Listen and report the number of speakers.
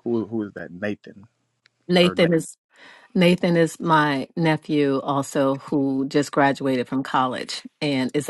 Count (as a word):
two